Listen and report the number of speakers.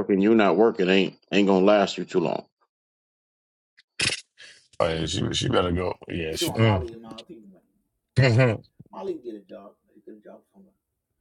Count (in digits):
3